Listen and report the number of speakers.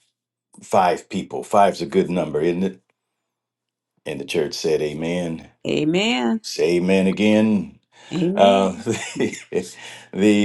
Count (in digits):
2